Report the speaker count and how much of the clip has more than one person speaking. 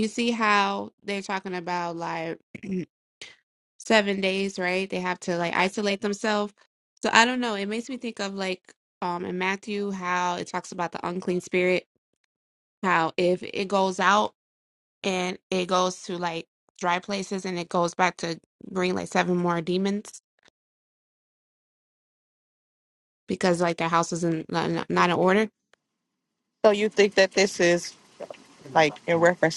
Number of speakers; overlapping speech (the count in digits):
2, no overlap